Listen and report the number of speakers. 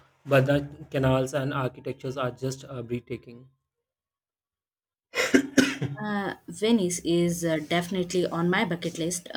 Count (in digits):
2